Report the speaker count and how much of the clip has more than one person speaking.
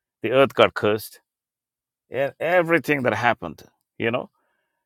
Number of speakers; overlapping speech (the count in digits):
1, no overlap